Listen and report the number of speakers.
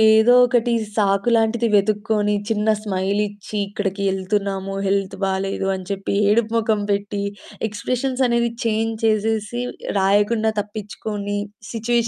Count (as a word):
one